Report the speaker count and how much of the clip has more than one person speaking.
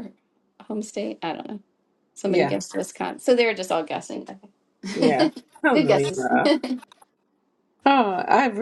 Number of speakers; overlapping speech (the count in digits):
2, about 14%